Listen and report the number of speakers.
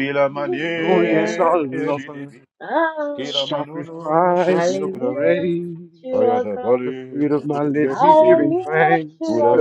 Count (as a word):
three